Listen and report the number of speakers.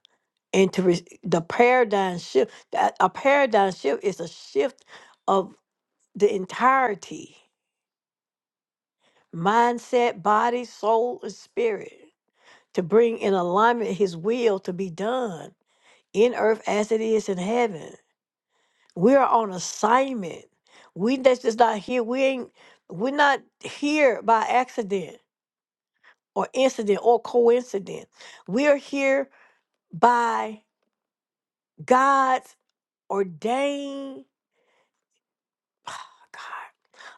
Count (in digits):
1